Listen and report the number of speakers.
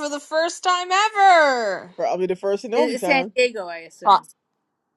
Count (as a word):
three